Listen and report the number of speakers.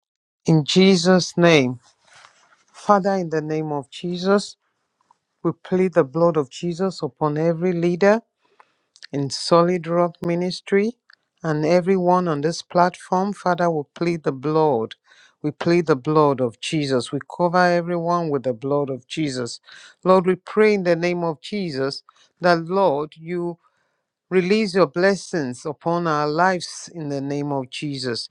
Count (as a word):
one